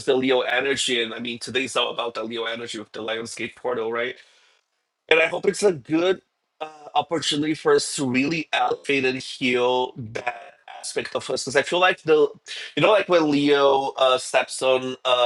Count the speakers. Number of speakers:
1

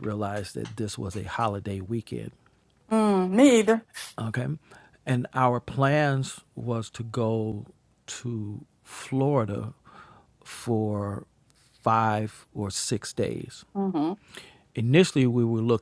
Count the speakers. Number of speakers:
2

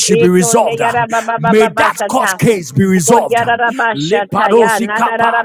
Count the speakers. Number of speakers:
2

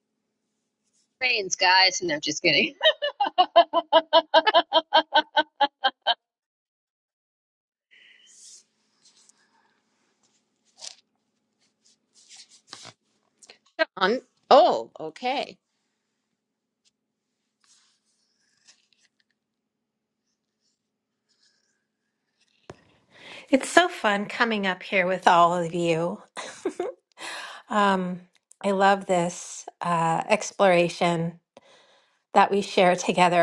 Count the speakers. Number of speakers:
3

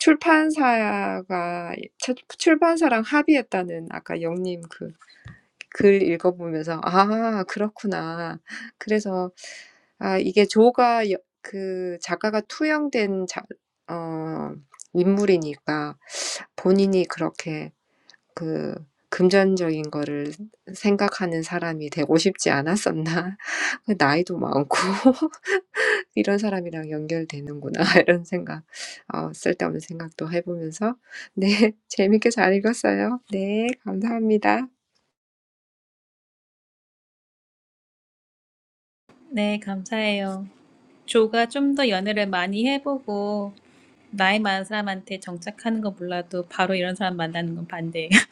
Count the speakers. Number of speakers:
2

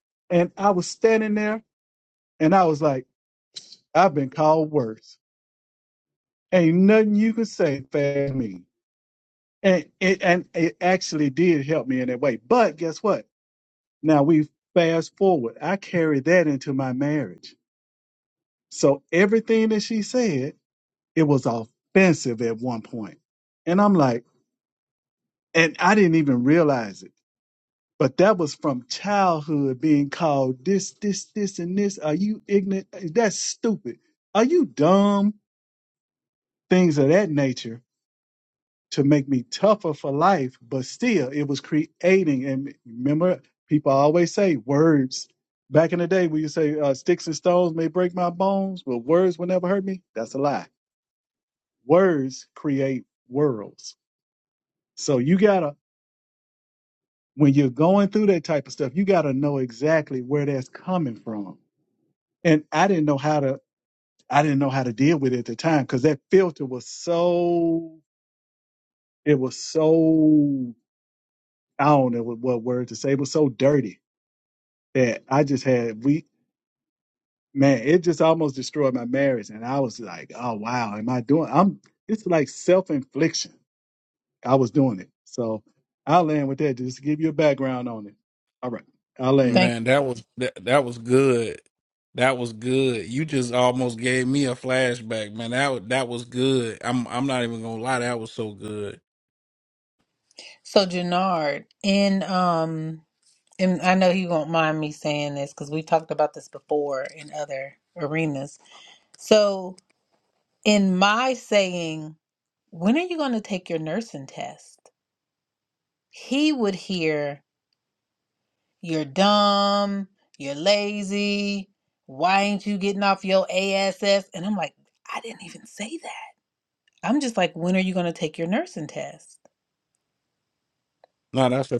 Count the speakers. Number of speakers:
3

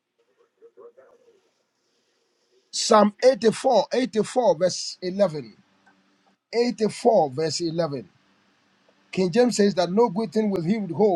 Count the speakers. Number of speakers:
1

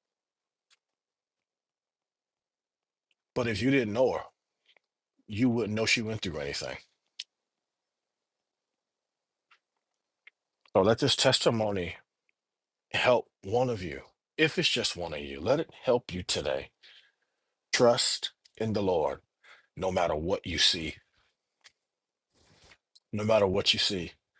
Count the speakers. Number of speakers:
1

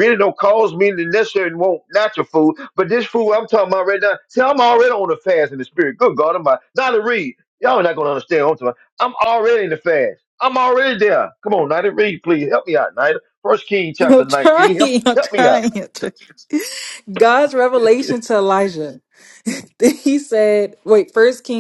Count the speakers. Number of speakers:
2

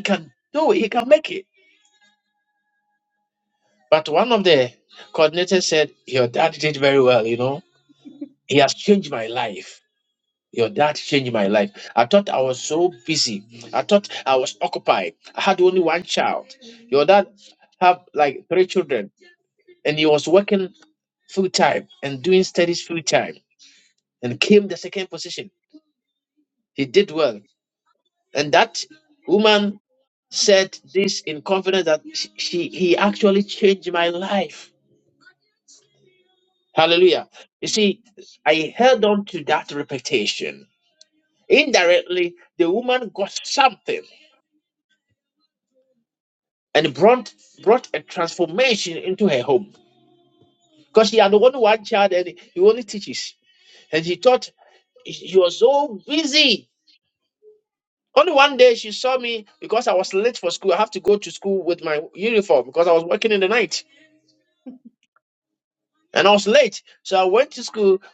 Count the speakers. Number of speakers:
1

